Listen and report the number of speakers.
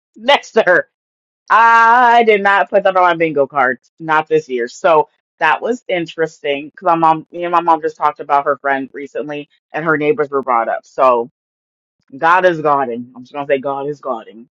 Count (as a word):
one